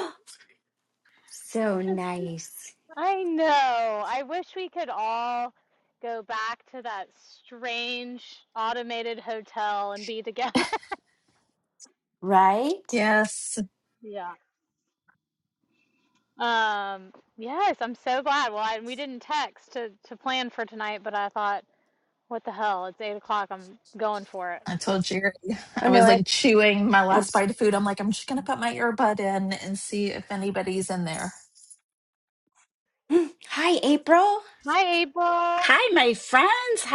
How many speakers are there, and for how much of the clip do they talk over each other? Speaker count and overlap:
4, about 2%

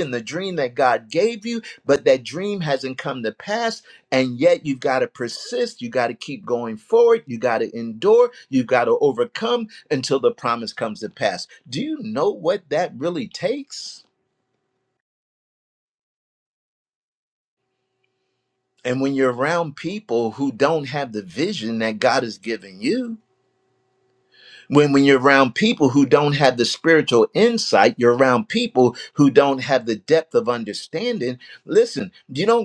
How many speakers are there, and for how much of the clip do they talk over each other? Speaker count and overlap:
1, no overlap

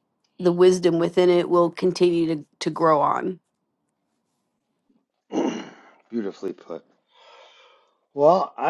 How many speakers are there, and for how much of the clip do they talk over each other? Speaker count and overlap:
2, no overlap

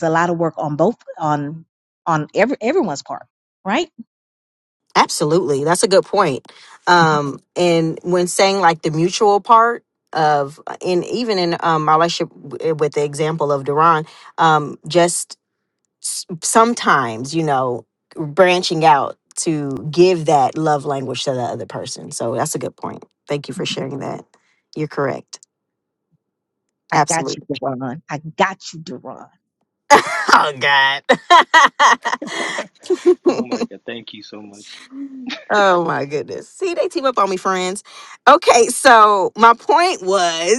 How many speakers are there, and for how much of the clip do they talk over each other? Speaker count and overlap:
3, about 1%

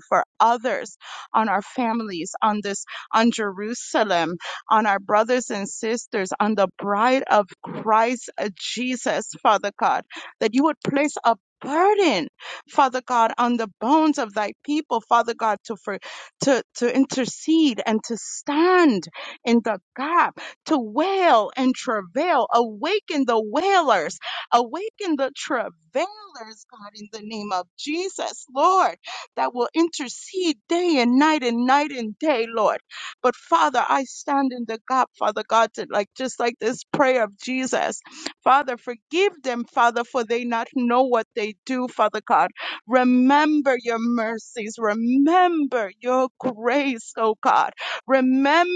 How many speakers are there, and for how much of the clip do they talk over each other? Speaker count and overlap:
1, no overlap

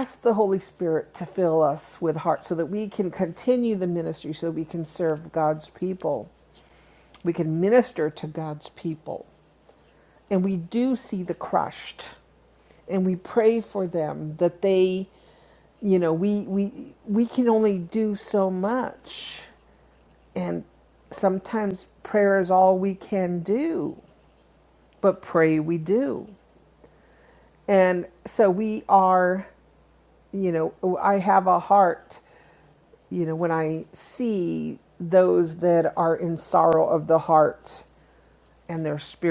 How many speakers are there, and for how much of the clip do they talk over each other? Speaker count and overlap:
1, no overlap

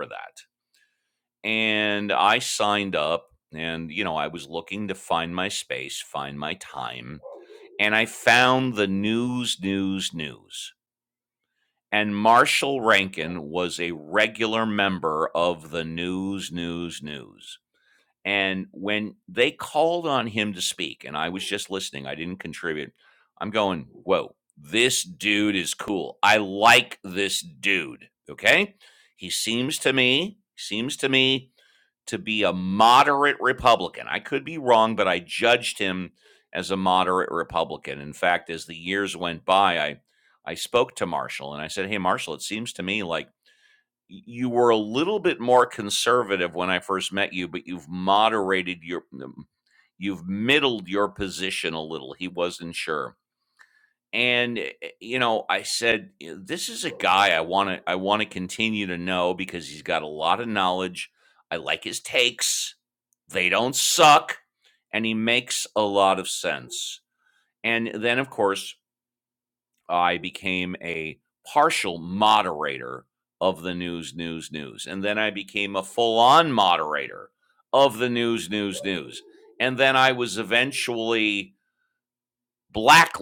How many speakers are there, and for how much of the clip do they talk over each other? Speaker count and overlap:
1, no overlap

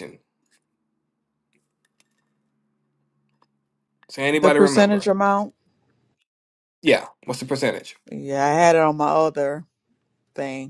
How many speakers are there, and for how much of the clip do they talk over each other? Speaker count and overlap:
2, about 6%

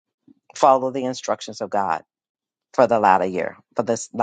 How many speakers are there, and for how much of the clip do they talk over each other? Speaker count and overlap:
1, no overlap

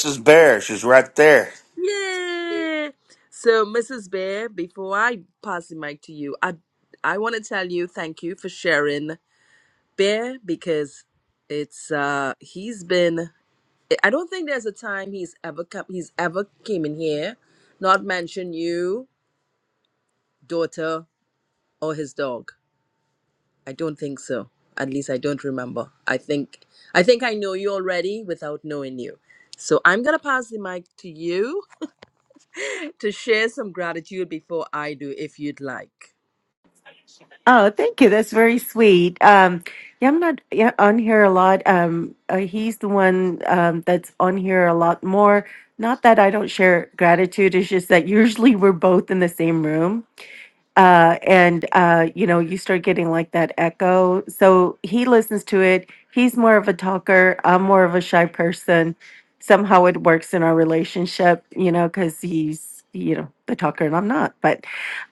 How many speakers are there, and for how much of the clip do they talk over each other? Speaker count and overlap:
3, no overlap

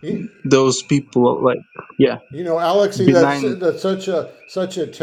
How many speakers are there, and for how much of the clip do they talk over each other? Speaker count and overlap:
2, about 11%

